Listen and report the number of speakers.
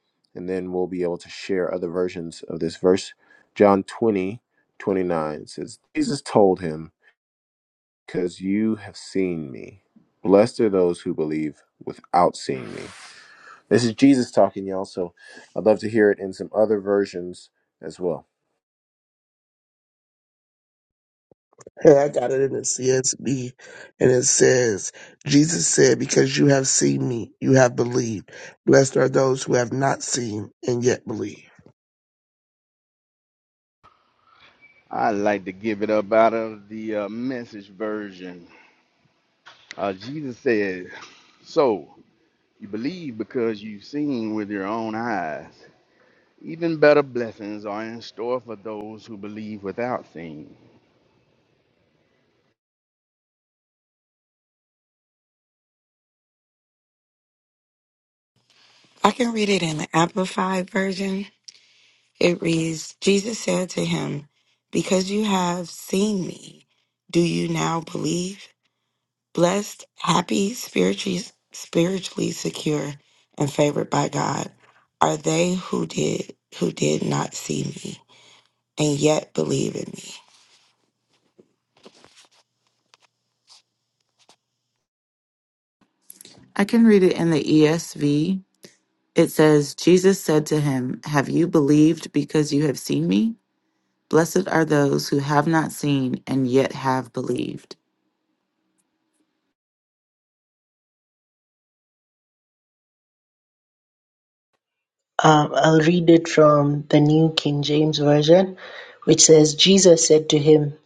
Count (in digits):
6